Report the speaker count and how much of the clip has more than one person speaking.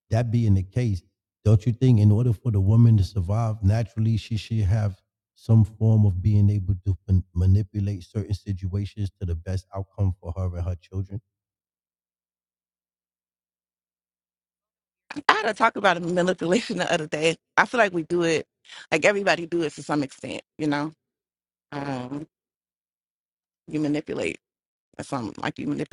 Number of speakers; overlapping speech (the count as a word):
two, no overlap